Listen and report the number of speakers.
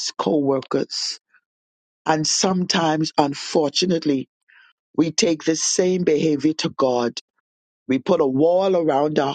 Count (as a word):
one